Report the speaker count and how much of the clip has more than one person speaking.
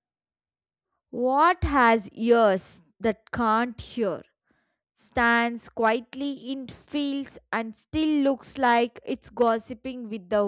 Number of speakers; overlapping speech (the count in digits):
1, no overlap